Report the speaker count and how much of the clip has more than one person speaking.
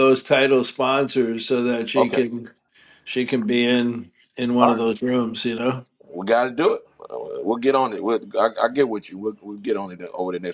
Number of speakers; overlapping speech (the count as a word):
two, about 4%